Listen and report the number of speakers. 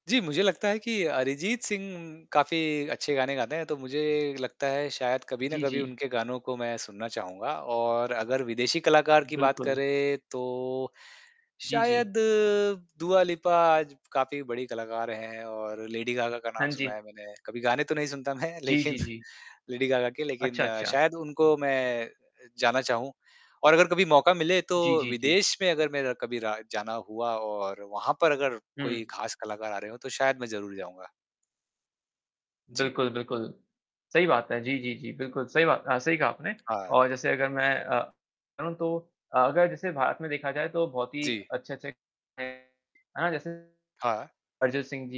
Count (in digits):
2